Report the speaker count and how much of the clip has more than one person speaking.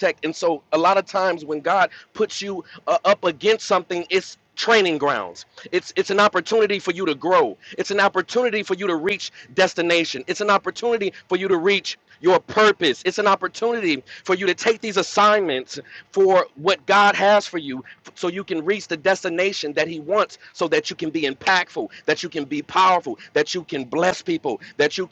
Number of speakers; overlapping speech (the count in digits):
1, no overlap